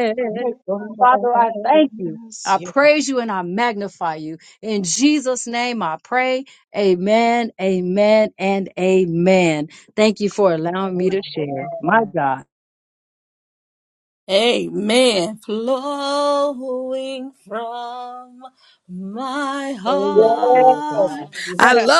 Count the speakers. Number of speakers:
3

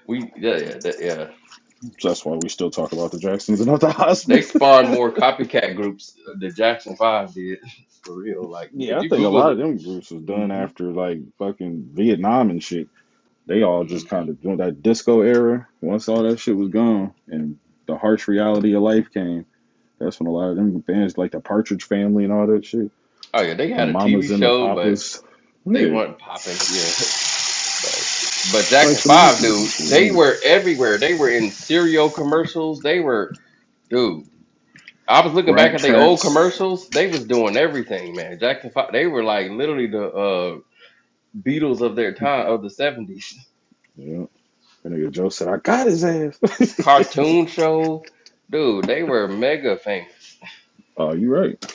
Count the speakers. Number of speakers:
2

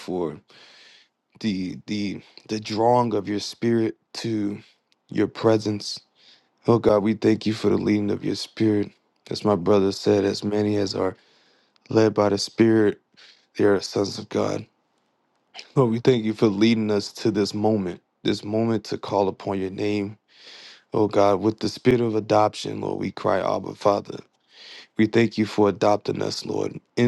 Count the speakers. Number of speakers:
1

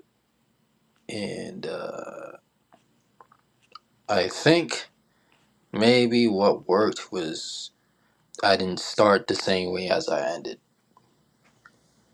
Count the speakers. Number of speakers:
1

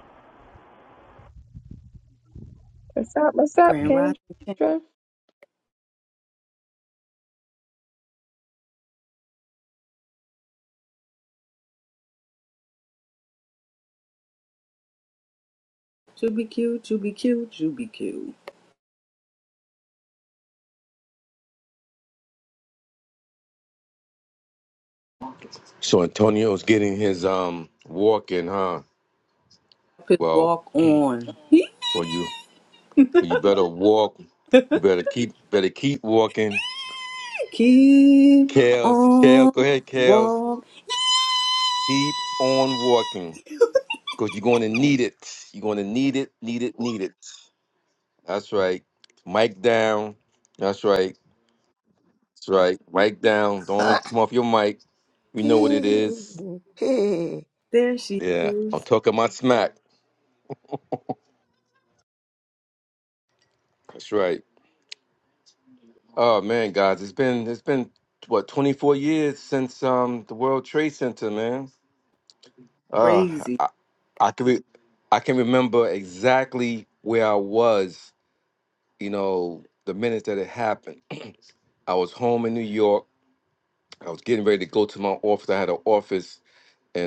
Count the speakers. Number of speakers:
4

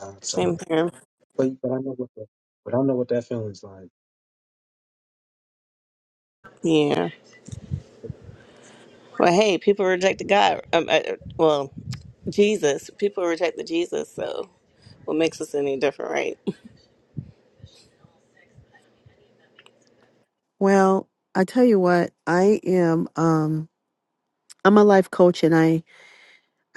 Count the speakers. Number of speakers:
3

